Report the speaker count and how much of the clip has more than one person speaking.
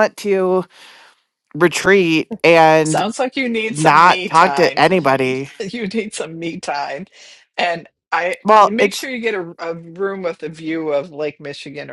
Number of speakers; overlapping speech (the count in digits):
2, about 14%